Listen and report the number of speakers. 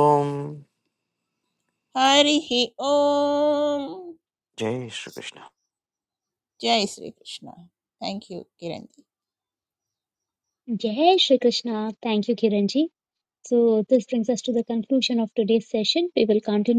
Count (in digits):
3